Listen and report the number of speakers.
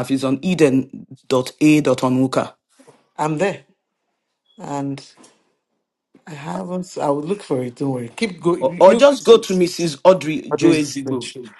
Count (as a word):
two